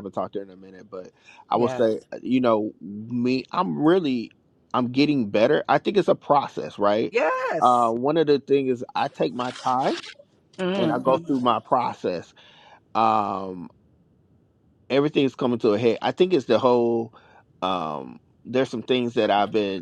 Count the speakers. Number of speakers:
2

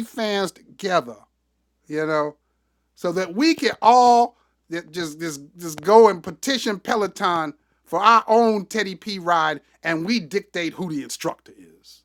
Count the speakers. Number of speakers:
1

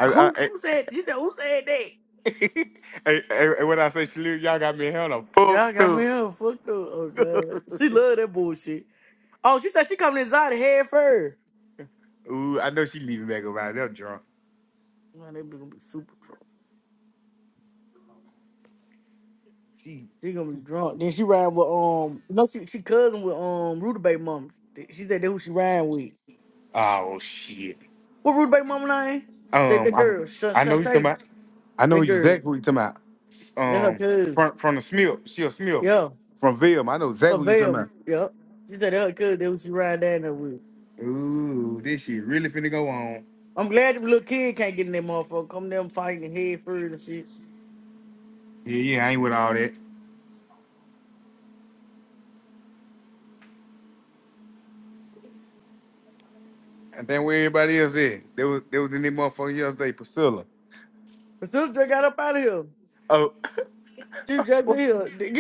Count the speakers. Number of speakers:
2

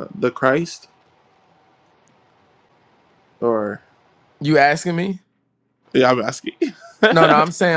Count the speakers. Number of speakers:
2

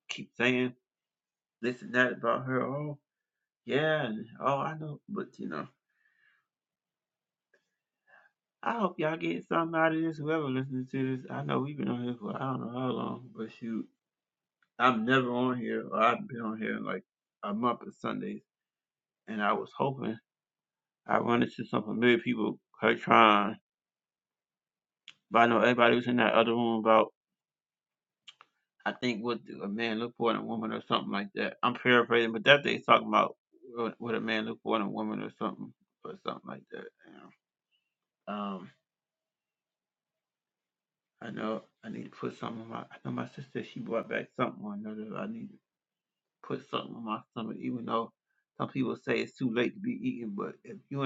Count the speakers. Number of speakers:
1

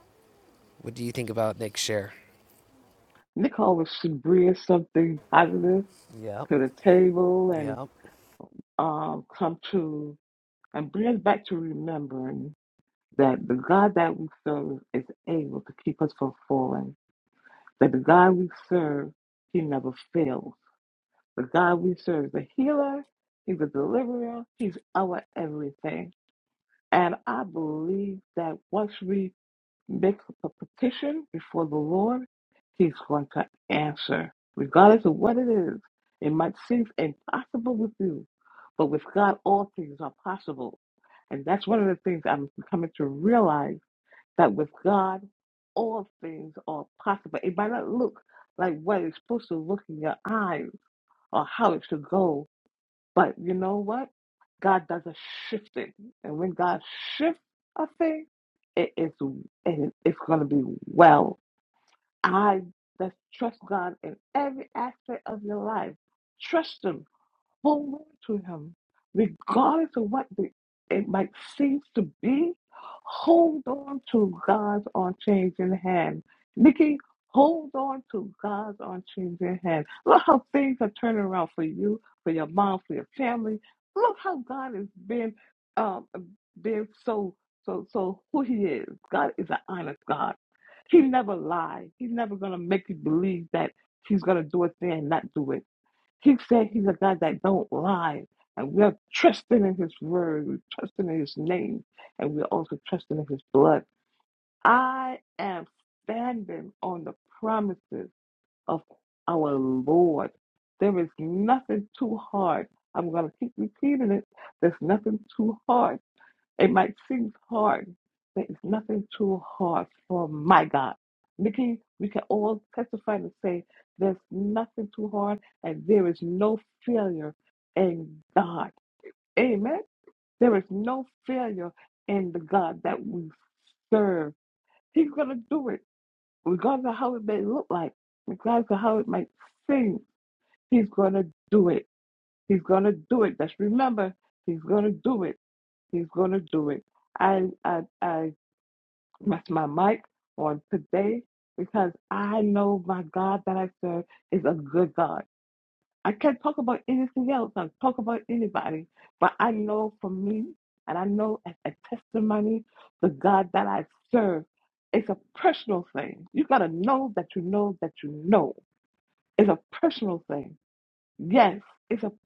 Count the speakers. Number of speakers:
2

